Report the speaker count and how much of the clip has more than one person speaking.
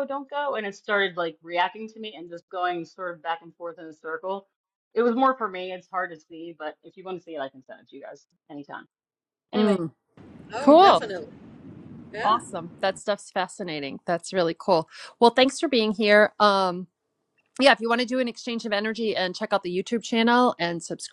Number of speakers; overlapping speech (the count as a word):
three, about 4%